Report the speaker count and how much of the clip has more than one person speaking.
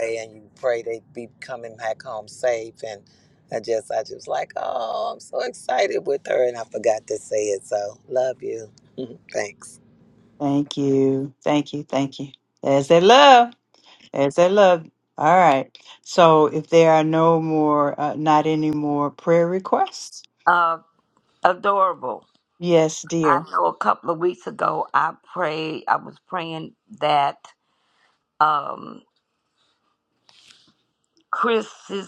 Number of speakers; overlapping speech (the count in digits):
3, about 1%